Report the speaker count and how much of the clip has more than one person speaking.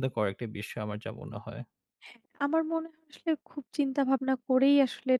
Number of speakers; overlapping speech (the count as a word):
two, no overlap